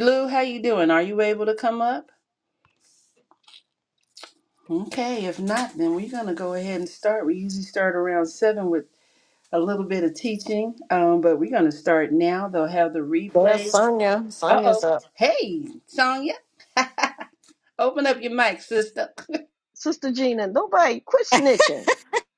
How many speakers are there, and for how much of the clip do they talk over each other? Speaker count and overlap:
3, about 4%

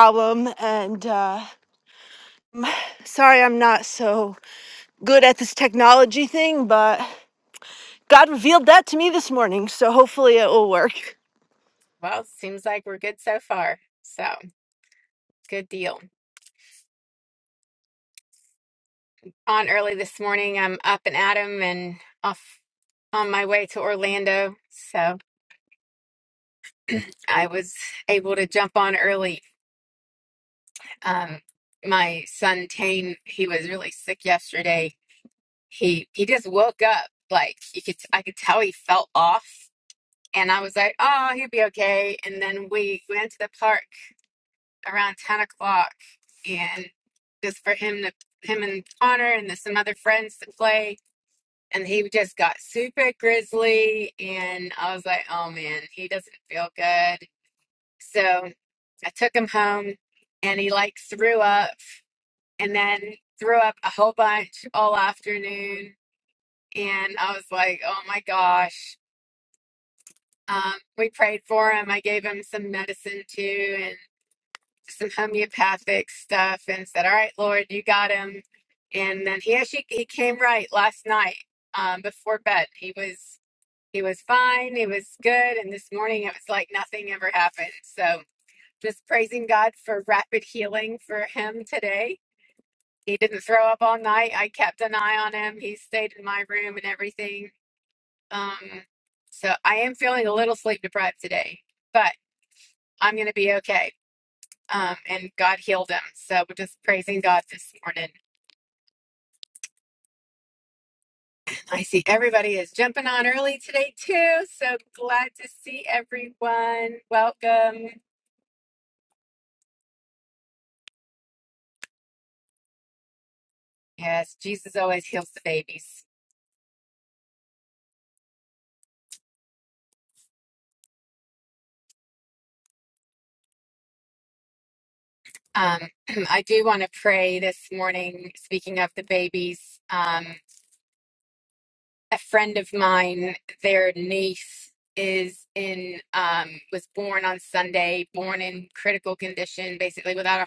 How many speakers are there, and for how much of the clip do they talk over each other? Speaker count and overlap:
2, no overlap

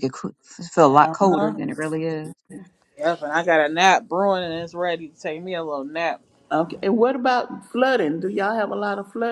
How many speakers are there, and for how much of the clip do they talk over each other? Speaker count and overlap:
3, about 8%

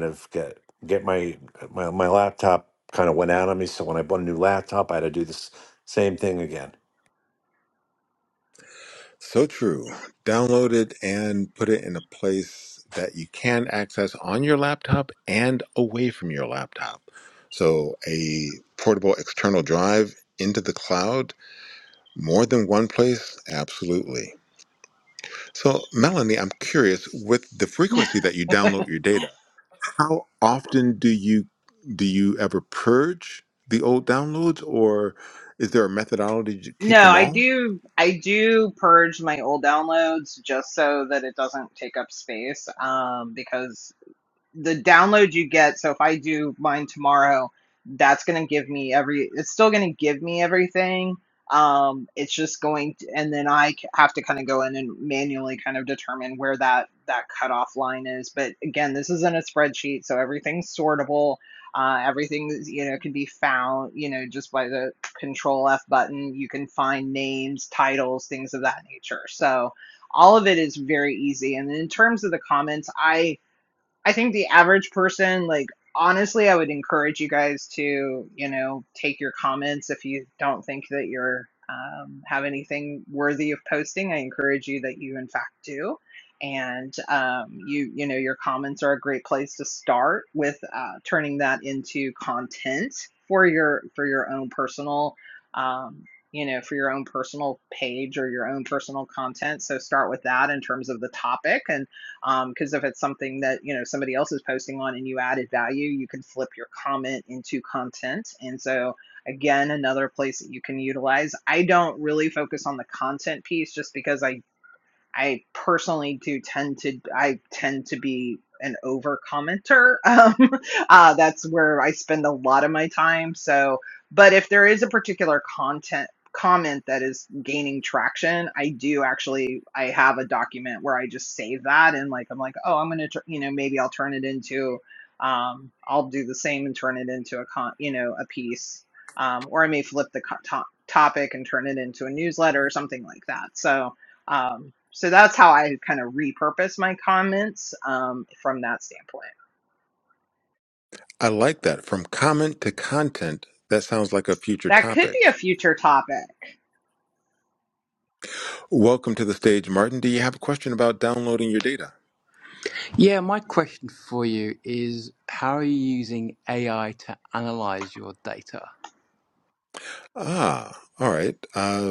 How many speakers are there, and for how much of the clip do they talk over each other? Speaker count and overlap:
4, about 1%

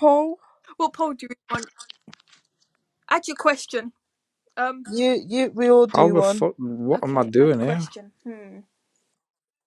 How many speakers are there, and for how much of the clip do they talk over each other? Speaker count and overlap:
3, about 15%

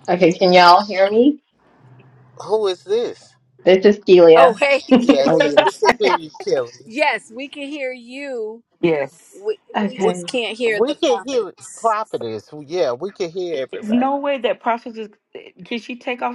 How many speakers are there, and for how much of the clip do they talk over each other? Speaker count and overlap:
4, about 16%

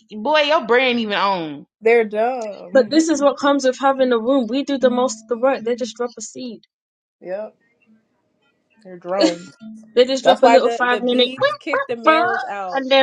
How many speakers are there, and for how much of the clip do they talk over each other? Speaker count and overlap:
3, about 13%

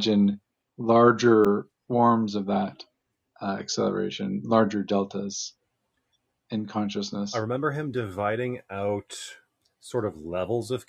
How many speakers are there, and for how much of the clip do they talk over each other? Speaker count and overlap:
2, under 1%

